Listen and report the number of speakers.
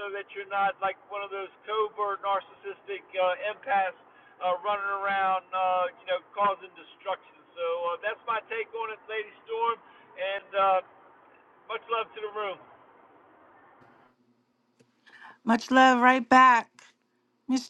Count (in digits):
2